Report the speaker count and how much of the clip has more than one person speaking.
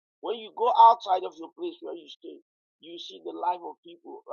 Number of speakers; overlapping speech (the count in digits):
1, no overlap